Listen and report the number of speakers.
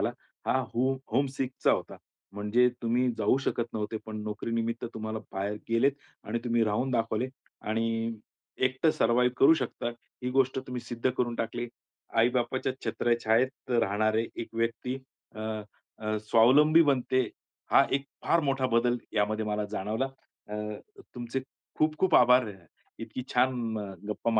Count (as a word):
one